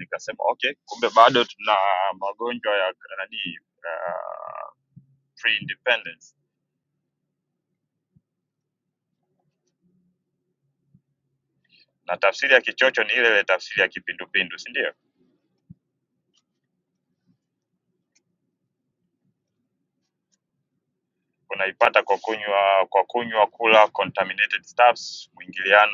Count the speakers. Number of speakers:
1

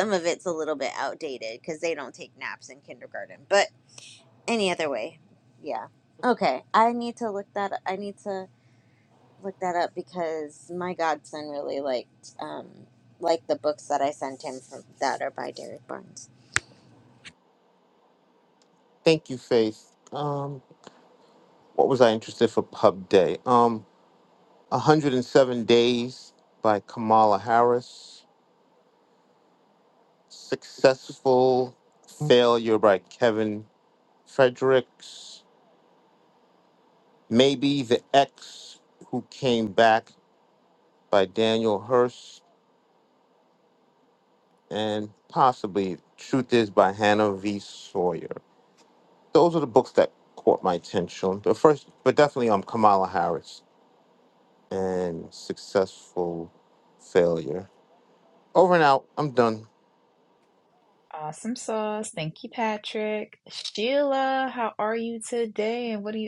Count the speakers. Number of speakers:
3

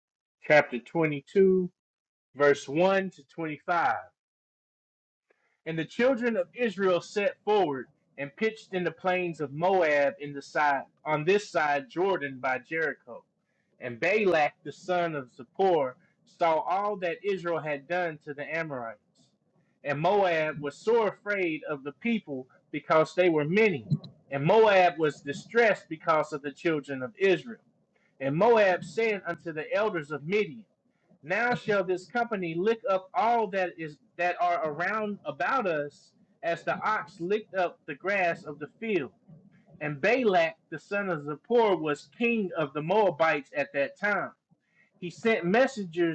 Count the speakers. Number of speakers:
1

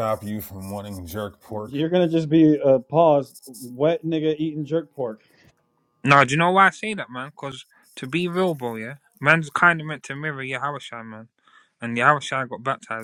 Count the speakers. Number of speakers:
3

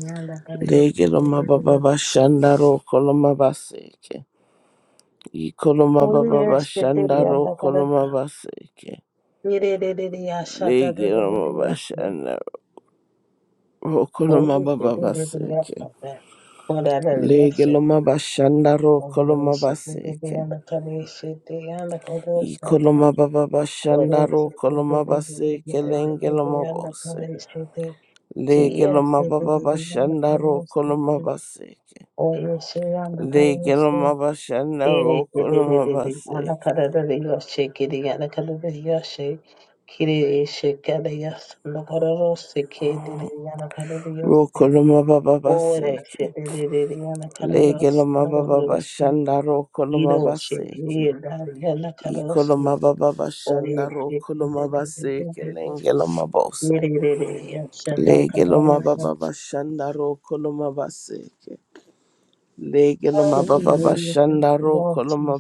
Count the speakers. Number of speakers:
2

